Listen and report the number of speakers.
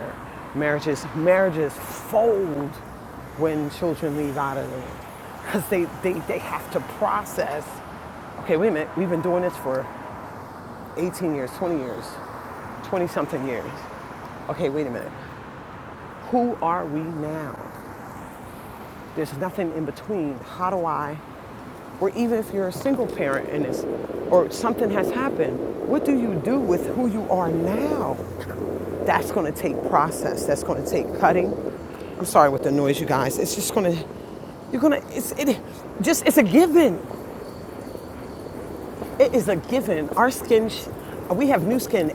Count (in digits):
1